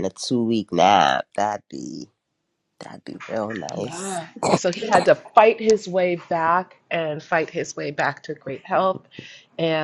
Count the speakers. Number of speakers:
2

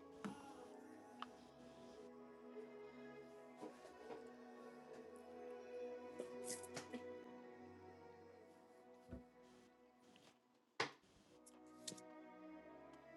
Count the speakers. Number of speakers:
0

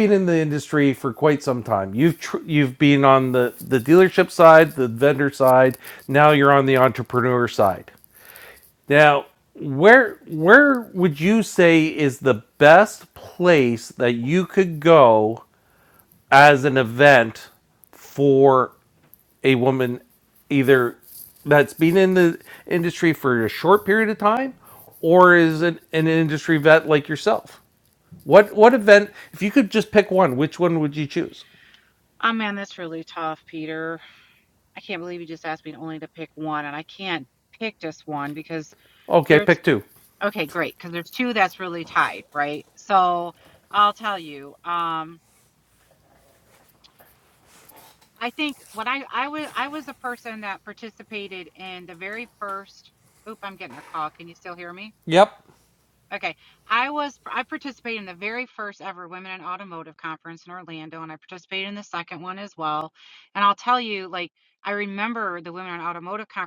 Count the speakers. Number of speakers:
2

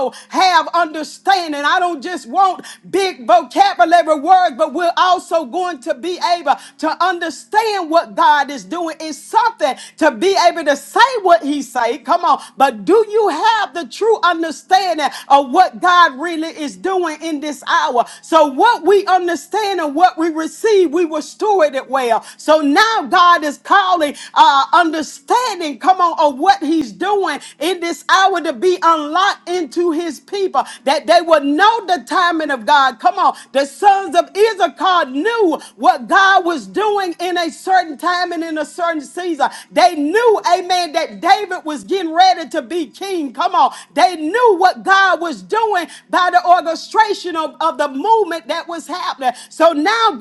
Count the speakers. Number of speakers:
1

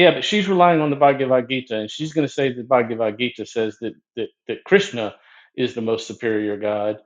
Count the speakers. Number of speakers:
1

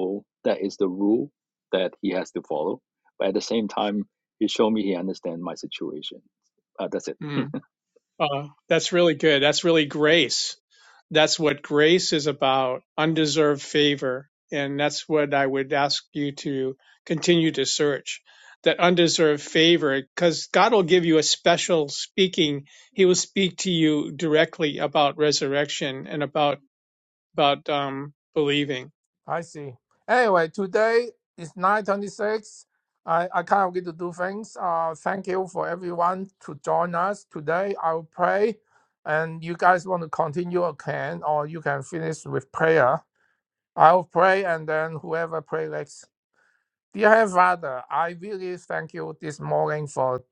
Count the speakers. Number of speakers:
3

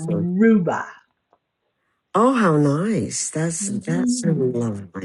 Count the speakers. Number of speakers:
2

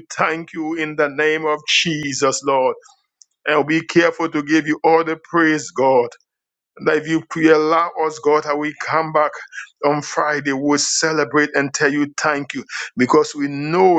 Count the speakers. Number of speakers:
1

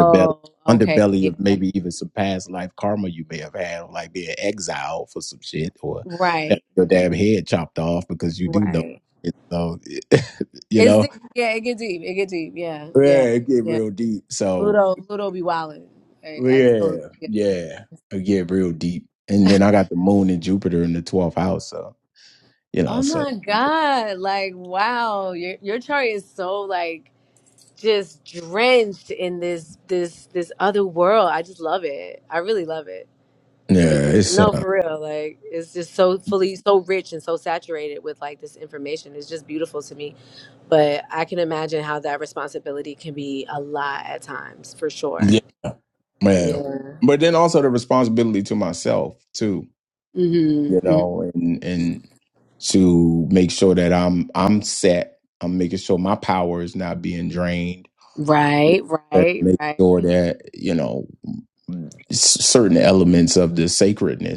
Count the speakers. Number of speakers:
2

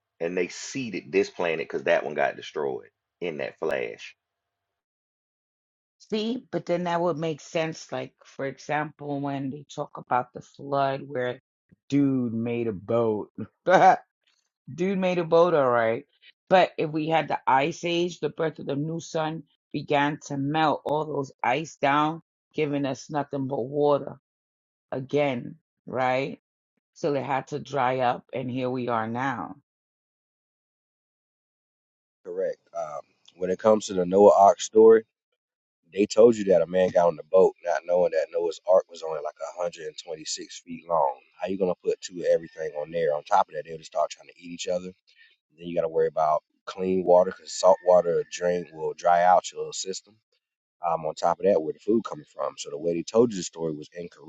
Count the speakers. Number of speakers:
3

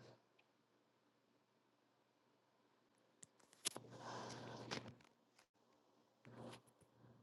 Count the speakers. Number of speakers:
0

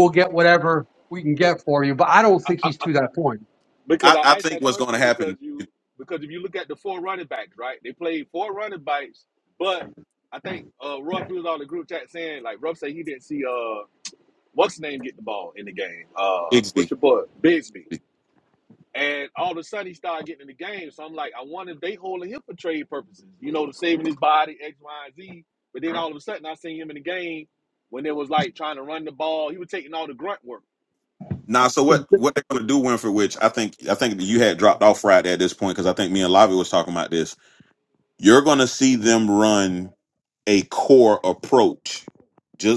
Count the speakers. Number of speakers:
3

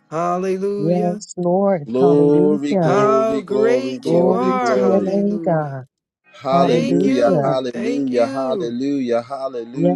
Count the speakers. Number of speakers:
3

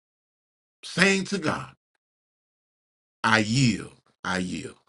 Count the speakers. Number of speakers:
1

